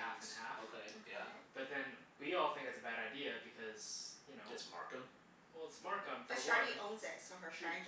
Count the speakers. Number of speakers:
3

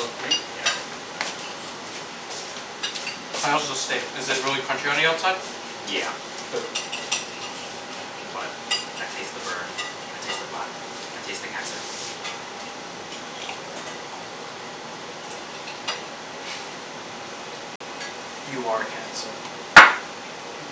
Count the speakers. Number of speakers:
2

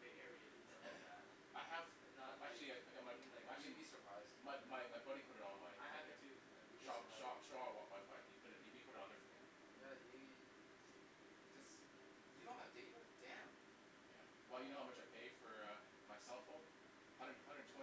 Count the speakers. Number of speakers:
3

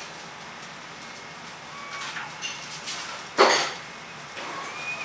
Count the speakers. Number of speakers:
0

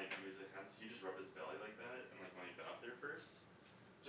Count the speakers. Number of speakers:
1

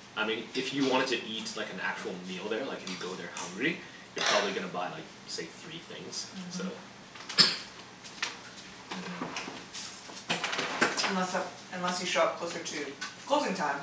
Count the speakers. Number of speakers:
2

